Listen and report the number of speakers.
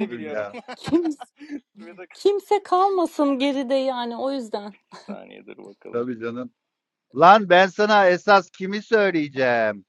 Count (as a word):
three